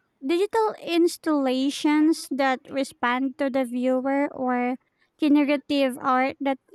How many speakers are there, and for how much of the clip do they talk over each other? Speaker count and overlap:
one, no overlap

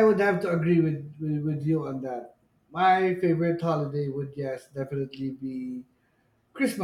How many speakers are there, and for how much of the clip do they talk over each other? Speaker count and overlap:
one, no overlap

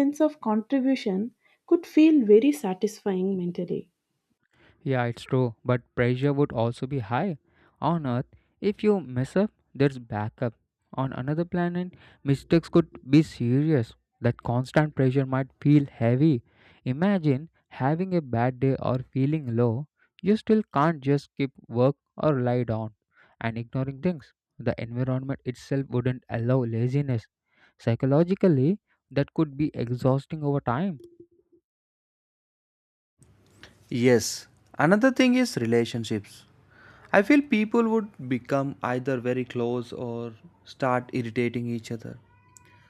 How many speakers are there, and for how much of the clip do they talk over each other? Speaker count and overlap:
three, no overlap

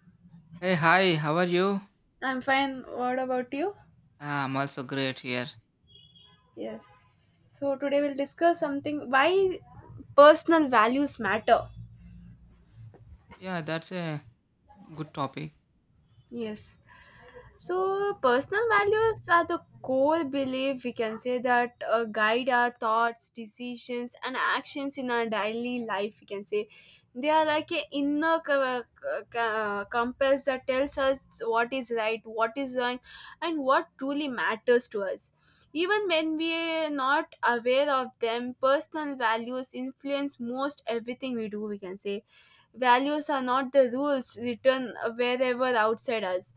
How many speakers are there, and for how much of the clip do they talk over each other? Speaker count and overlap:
two, no overlap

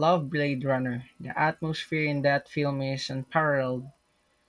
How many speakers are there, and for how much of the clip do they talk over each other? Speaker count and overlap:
one, no overlap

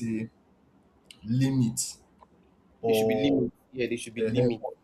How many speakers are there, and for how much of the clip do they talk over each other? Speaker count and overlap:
two, about 17%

